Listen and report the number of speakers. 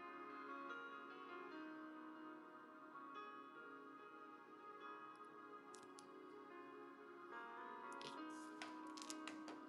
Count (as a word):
zero